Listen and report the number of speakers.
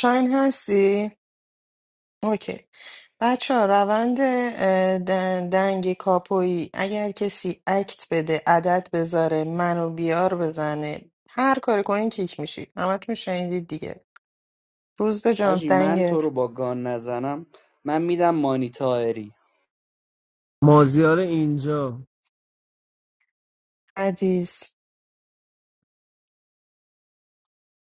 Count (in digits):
3